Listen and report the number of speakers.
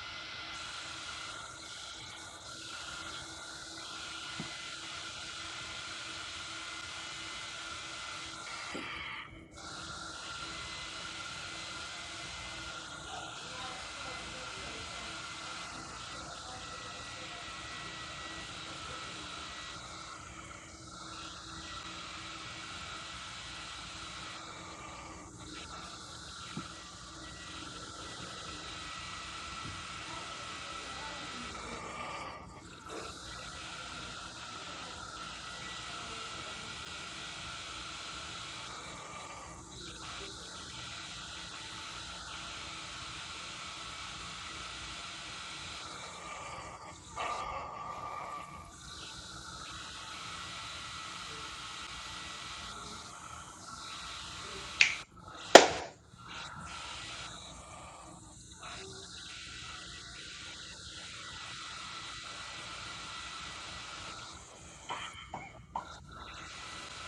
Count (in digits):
0